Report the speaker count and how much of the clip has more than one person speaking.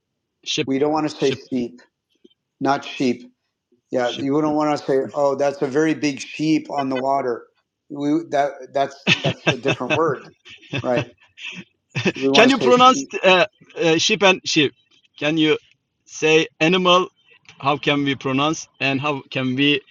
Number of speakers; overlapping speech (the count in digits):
2, about 5%